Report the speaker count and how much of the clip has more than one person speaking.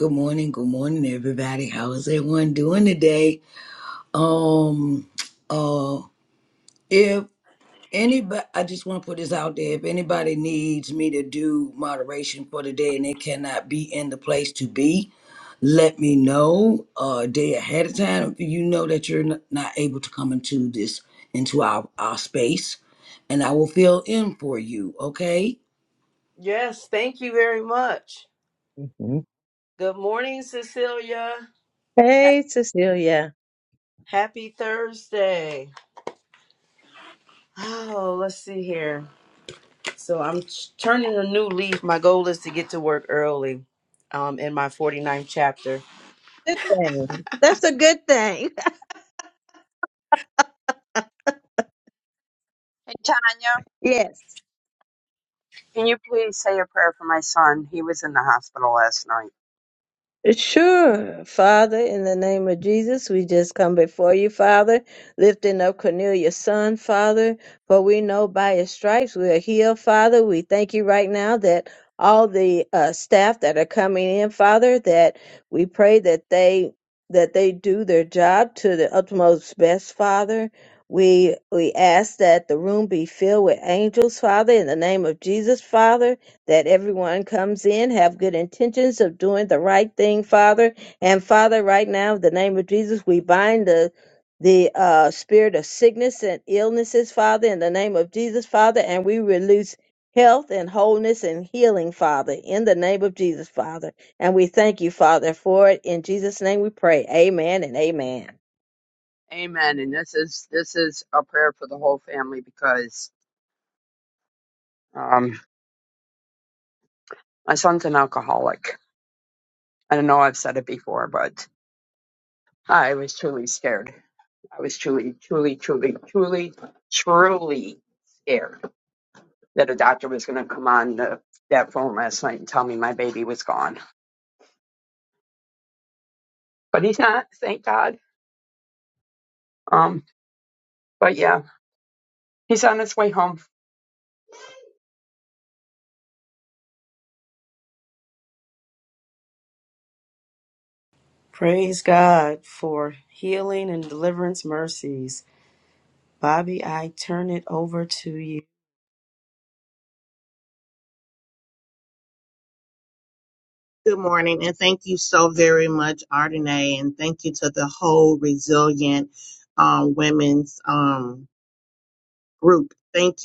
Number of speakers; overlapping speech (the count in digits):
5, no overlap